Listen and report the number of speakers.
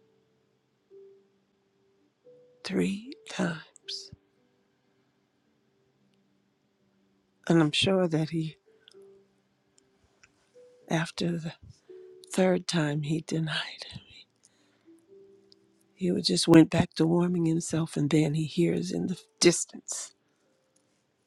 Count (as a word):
one